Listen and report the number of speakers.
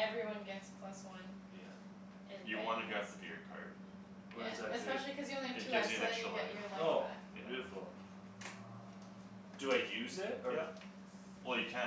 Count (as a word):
three